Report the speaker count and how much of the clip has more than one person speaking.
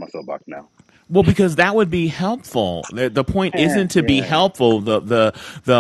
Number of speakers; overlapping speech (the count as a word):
two, about 16%